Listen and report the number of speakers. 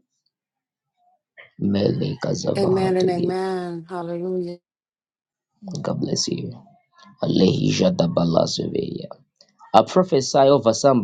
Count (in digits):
2